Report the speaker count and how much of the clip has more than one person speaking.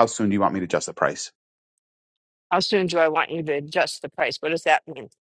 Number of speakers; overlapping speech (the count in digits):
2, no overlap